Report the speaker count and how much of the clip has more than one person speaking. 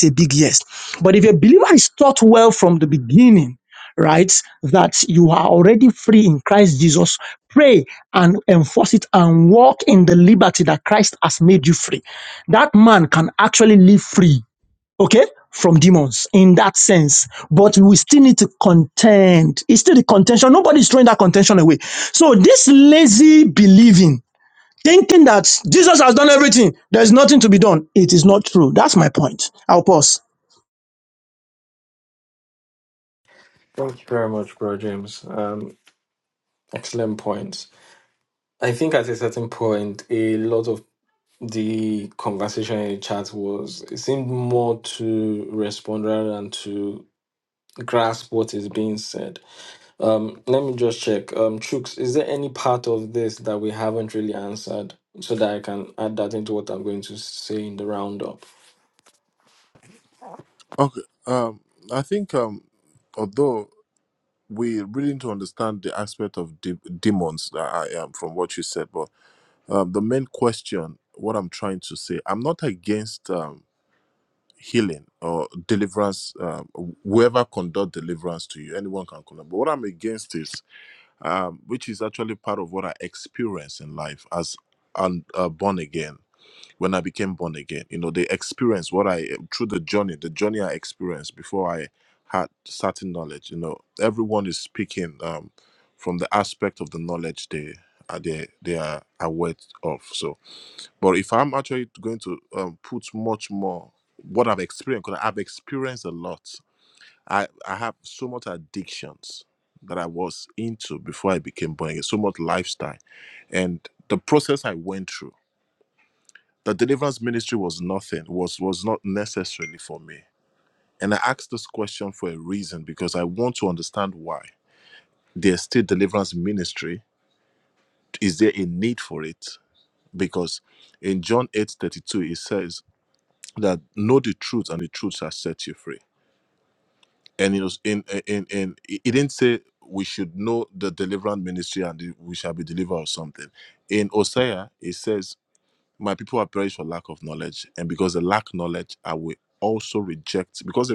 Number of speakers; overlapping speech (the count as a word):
three, no overlap